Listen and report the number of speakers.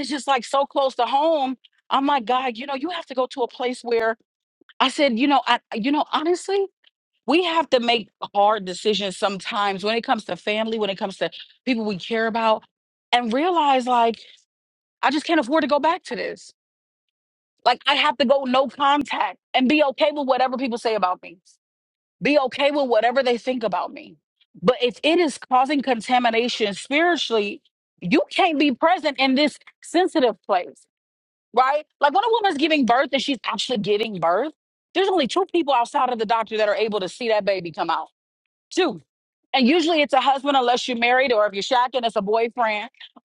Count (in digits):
1